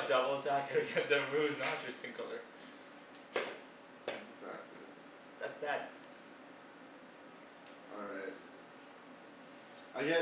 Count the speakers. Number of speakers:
2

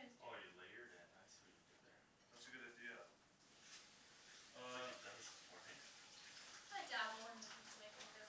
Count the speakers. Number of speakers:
3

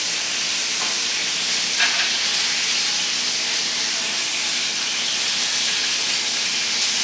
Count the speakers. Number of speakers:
0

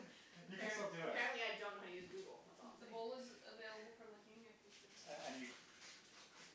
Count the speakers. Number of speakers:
3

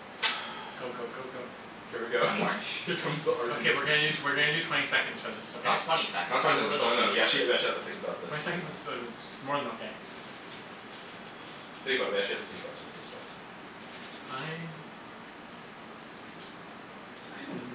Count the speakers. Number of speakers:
3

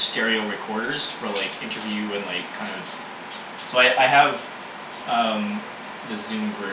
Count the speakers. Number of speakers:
1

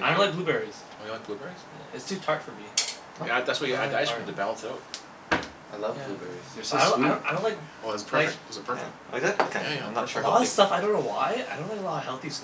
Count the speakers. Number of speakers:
4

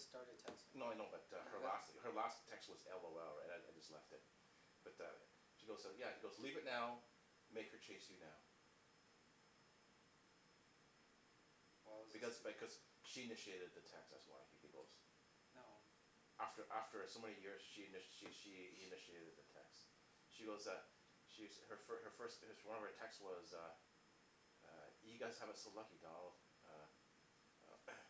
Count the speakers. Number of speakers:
2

